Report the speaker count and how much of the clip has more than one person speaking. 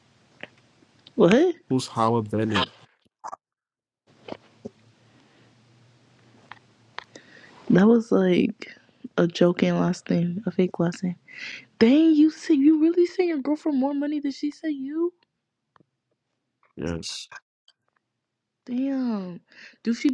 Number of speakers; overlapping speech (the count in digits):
2, no overlap